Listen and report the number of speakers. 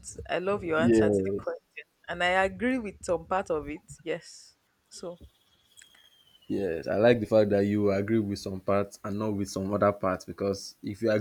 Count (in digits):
2